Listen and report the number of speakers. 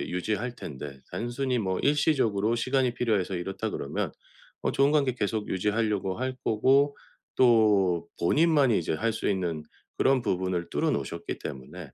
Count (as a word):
one